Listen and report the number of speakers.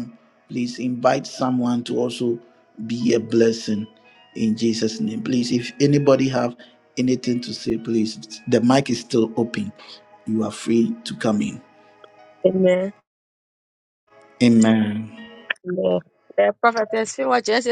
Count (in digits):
2